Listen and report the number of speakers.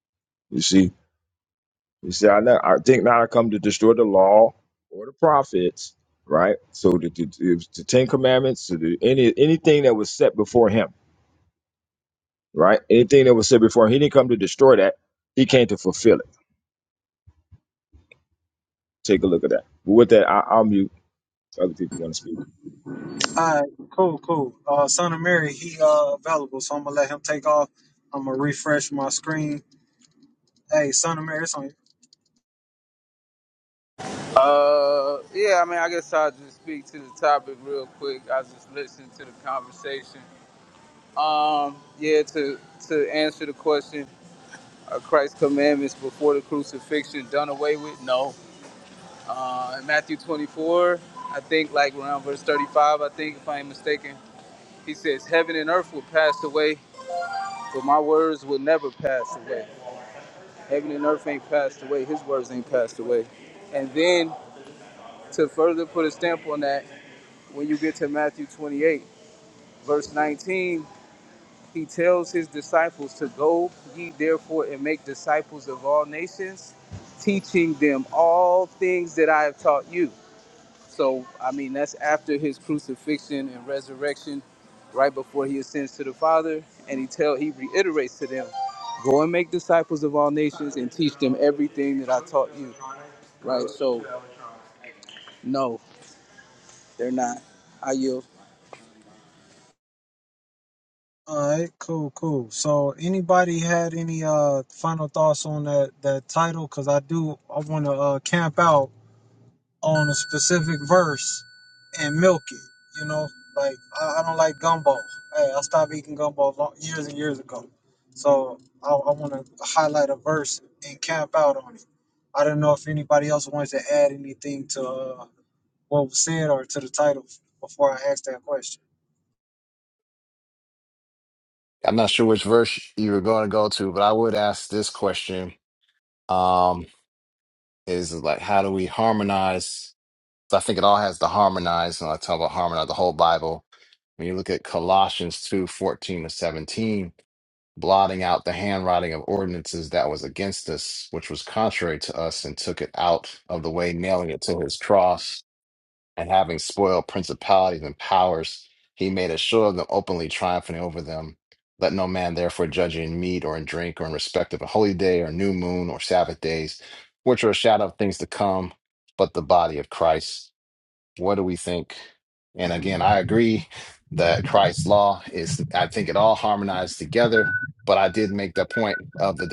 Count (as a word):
four